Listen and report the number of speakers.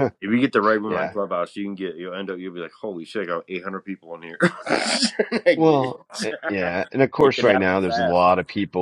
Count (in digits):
2